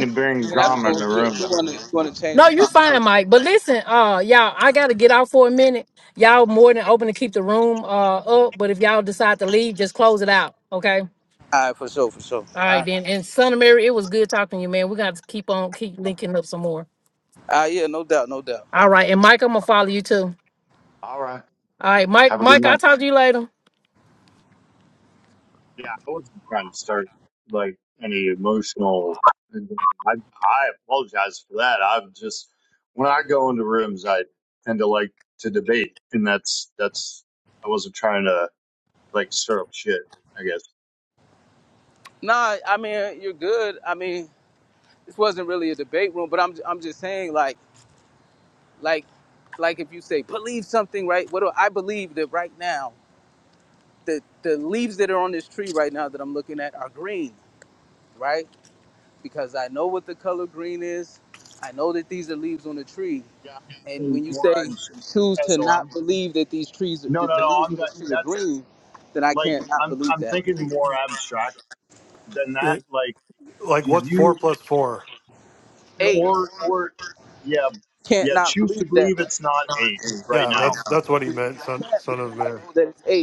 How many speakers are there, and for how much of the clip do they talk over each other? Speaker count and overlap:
four, about 12%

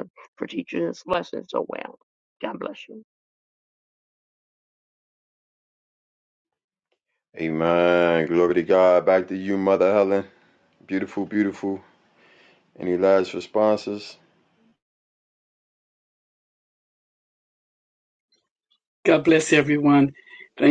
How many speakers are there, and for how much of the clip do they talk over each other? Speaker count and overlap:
three, no overlap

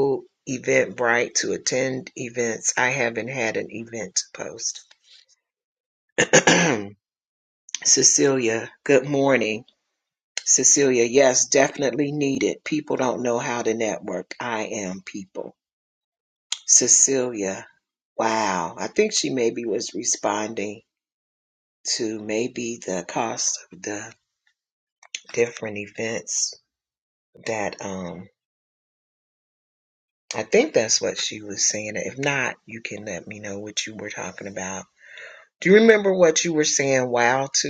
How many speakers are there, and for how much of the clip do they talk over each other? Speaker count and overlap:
one, no overlap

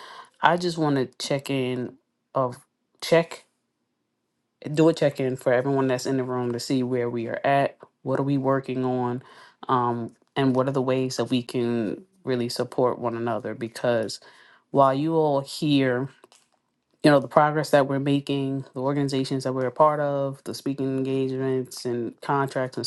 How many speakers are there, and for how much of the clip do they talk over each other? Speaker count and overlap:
one, no overlap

